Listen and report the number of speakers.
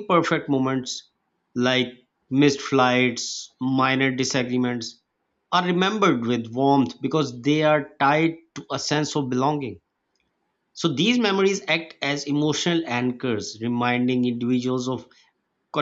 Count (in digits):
1